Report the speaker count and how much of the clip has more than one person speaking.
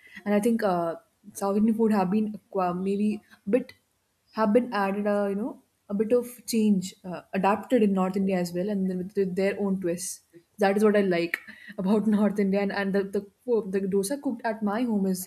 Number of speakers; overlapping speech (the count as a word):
one, no overlap